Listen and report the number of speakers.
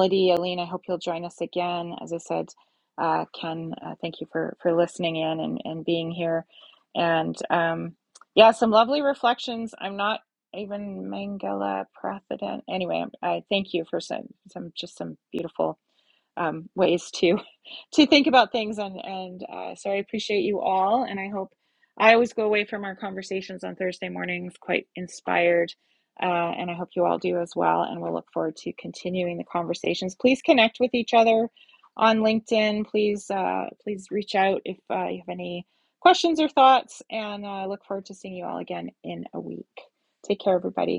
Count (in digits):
1